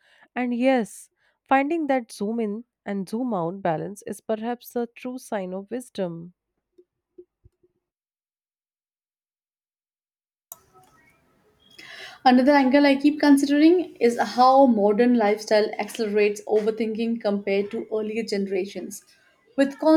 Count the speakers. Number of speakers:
two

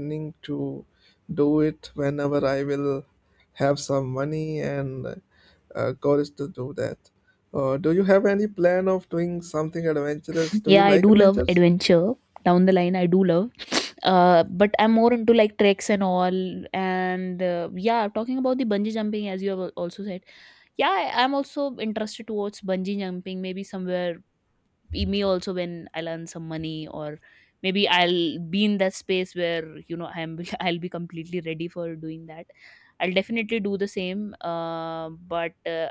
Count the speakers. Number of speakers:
two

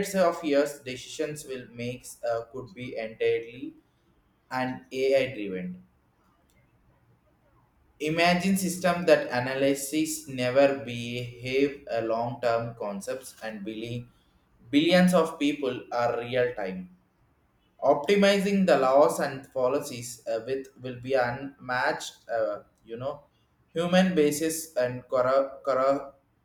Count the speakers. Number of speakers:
one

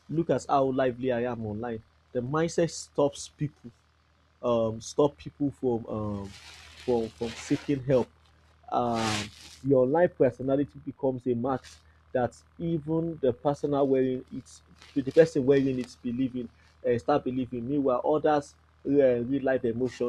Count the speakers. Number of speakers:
one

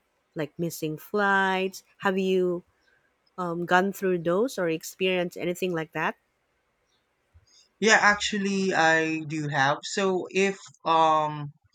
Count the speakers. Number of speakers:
two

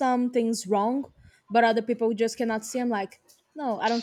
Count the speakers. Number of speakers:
one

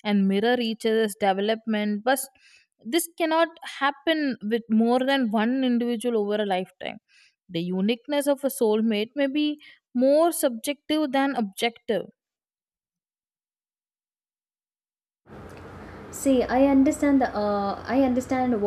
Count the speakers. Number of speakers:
two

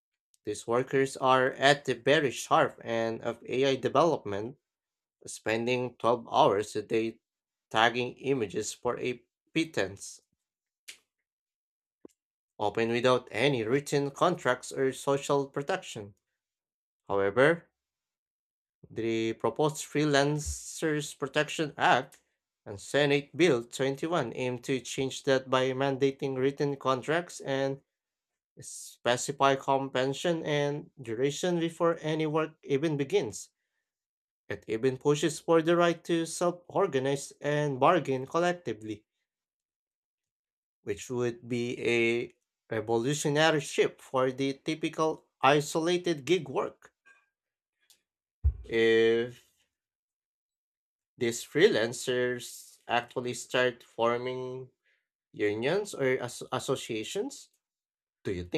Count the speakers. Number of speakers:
one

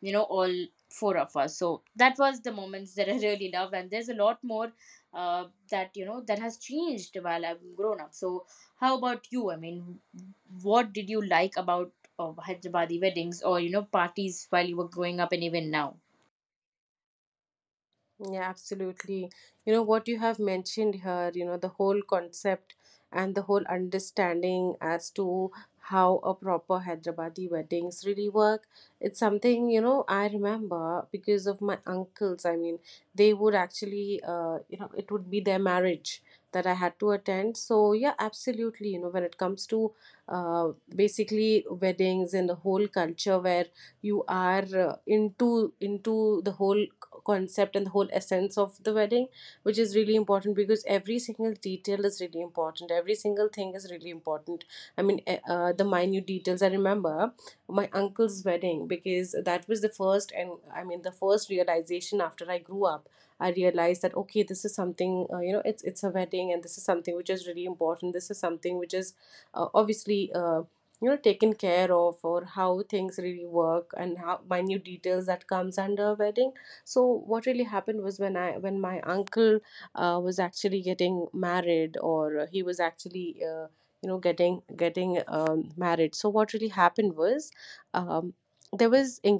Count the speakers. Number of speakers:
two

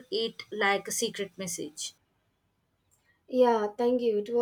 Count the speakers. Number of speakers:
two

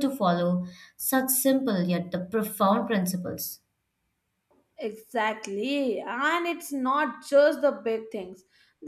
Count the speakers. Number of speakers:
two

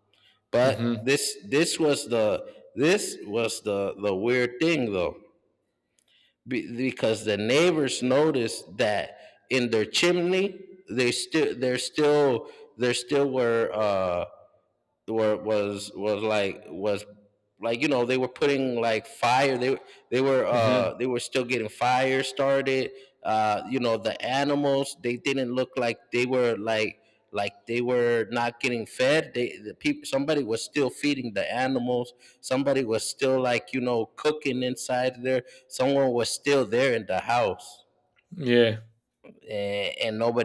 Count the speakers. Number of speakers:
two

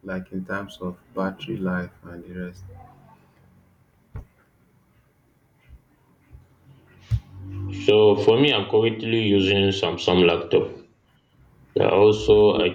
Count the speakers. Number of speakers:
two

